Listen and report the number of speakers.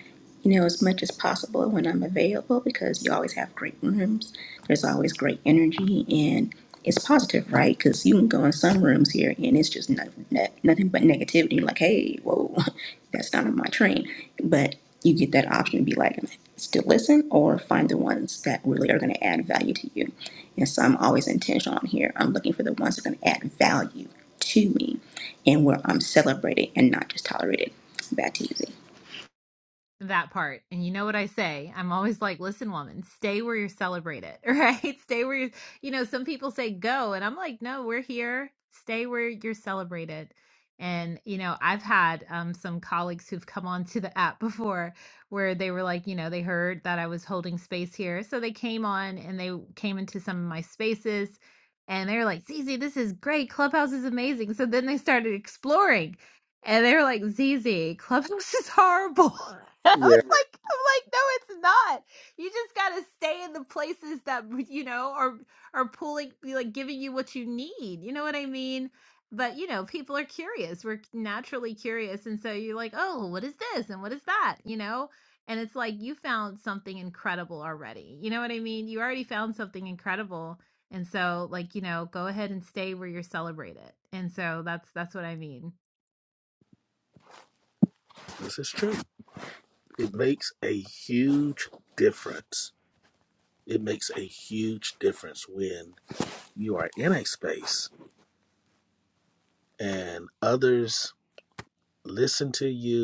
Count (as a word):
three